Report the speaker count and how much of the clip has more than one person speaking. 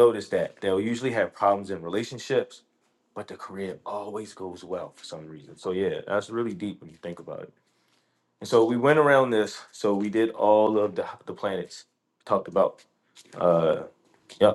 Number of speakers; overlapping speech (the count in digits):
1, no overlap